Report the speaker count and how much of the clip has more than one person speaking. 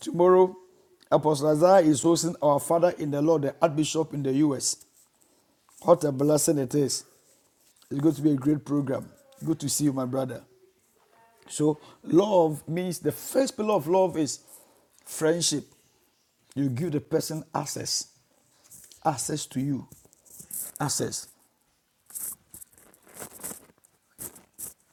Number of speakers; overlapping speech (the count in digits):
1, no overlap